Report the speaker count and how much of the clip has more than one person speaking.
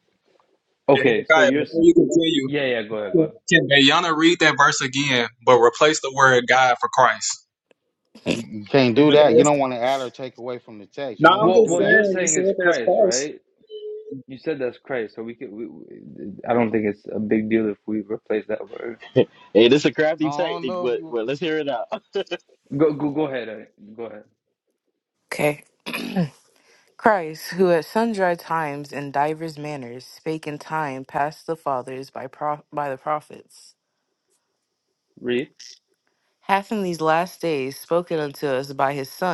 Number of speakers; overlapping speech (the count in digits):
5, about 11%